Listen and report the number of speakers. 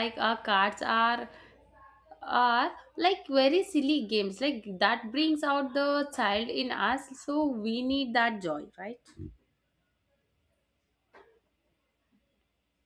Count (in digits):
1